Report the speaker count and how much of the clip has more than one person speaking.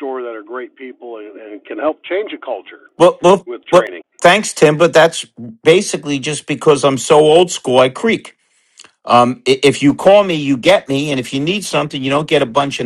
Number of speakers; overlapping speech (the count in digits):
2, about 1%